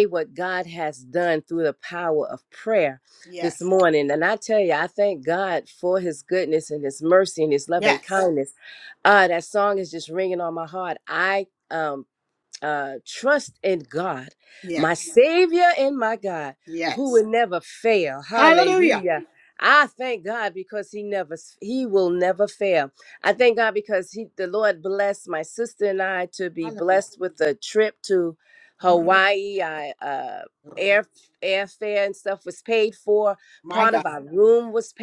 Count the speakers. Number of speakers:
two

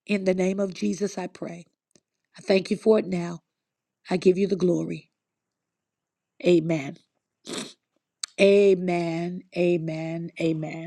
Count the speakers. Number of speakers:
one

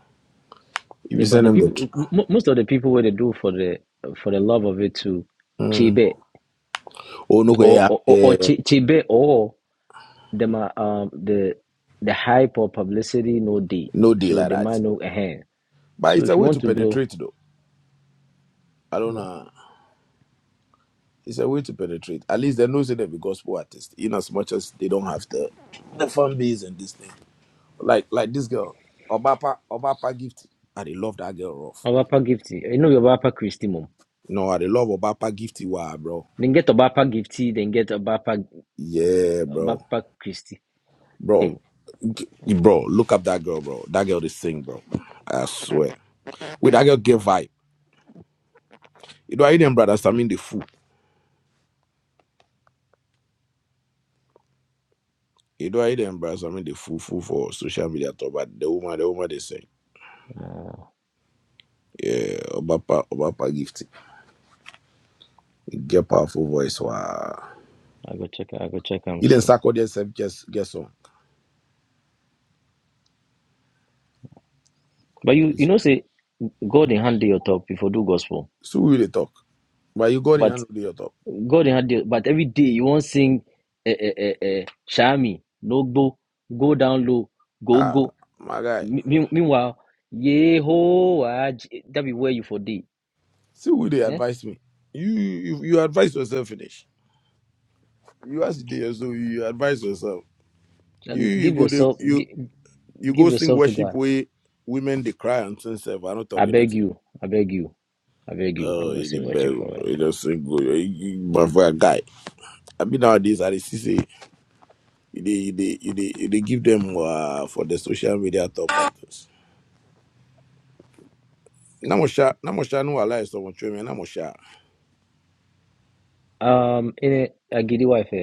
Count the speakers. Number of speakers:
two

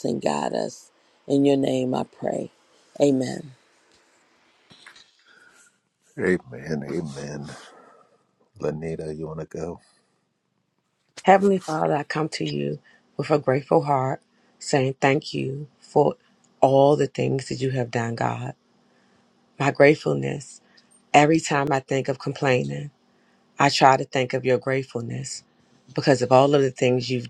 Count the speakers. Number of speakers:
three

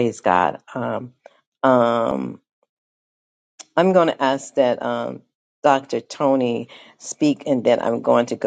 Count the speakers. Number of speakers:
one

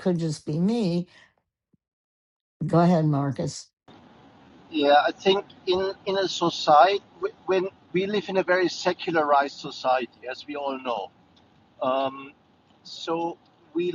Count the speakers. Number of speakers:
two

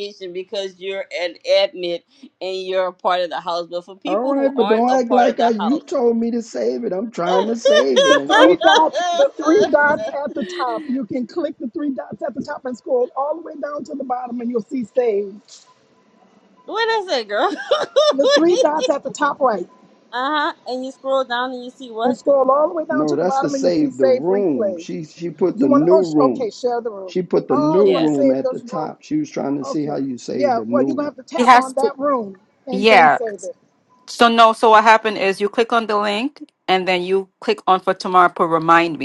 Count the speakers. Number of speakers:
four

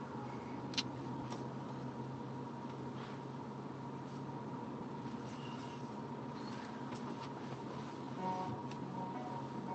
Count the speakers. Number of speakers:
zero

